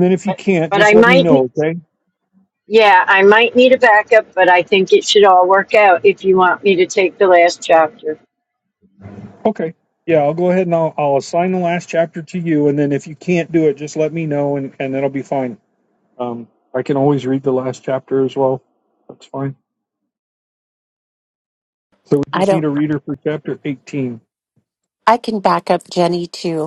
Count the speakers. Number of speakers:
3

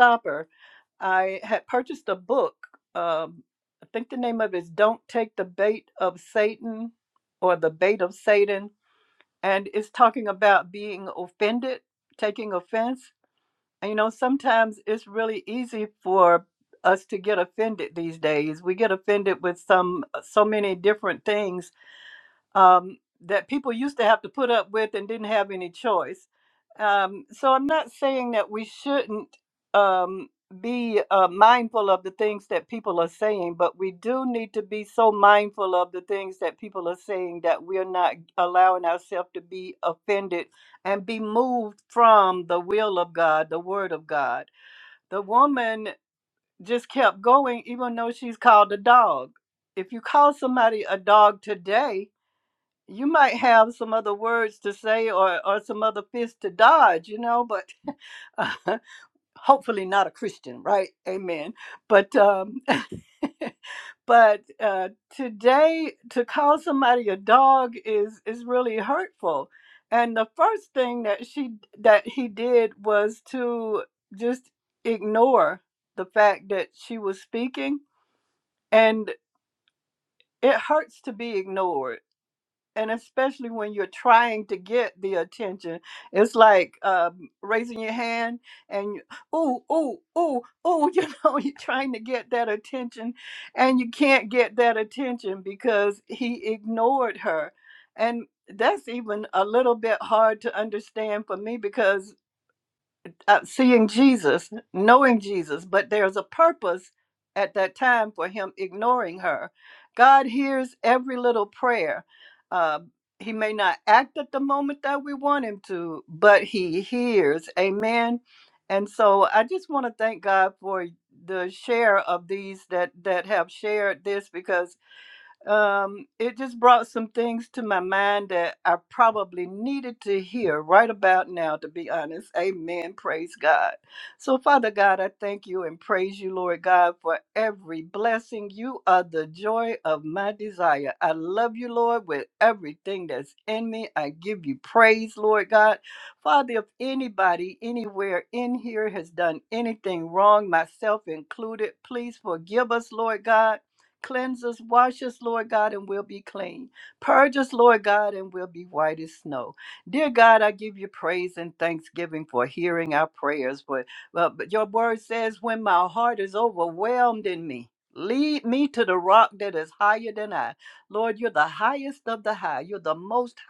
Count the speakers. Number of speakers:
1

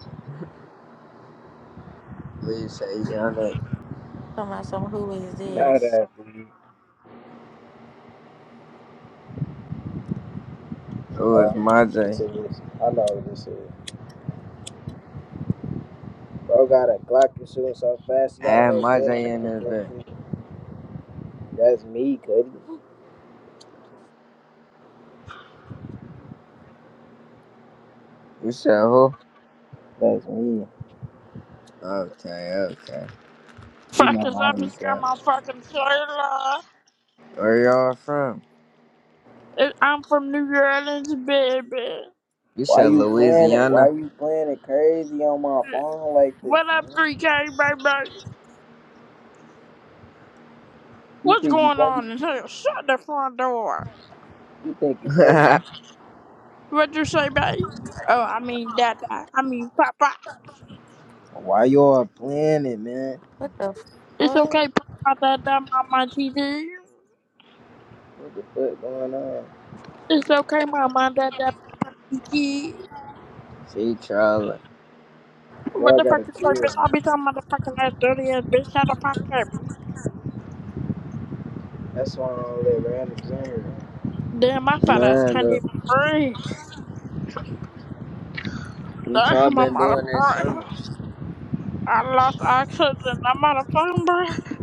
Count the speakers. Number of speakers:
4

